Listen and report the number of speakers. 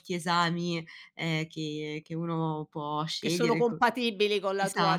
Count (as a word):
two